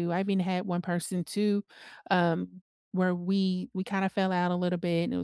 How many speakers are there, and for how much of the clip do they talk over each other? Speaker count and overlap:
one, no overlap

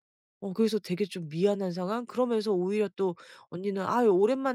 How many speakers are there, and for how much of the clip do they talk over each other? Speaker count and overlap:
one, no overlap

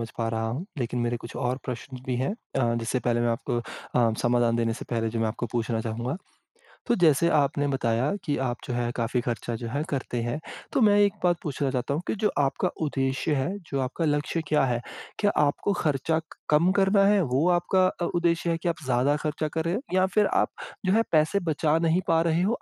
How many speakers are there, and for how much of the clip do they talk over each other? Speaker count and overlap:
one, no overlap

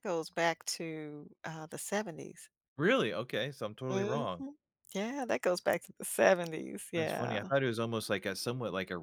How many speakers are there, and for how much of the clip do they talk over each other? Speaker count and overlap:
two, about 10%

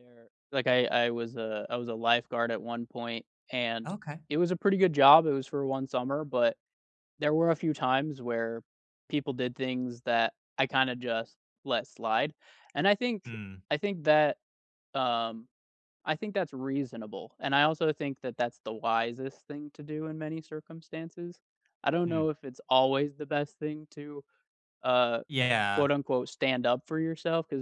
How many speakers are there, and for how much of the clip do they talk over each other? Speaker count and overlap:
two, about 2%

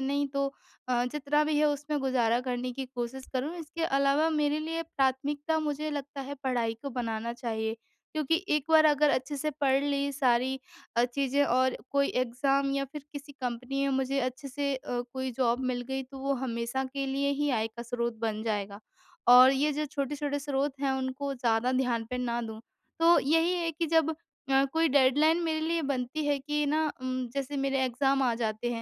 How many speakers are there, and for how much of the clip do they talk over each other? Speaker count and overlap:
one, no overlap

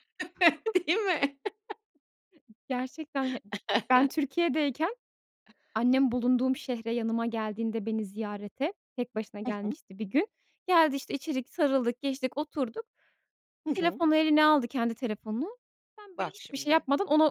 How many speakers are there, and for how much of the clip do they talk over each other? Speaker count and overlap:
two, about 7%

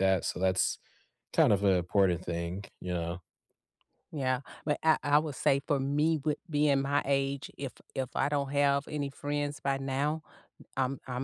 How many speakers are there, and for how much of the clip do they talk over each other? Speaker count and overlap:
two, no overlap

